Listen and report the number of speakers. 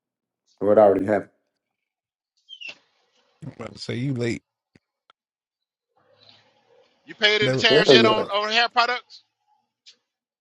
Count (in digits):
3